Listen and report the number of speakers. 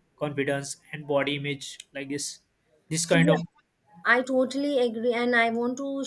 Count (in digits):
2